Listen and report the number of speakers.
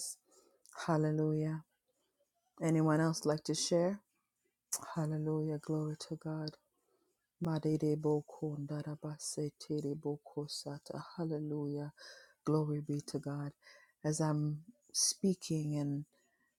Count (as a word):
one